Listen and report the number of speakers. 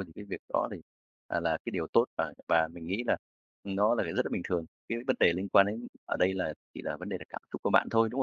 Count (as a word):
one